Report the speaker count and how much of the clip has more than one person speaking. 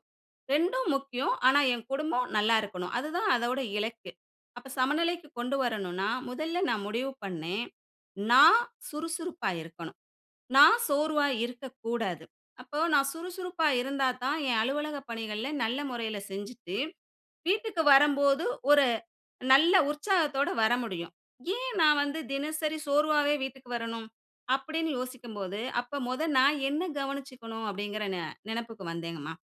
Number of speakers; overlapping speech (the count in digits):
1, no overlap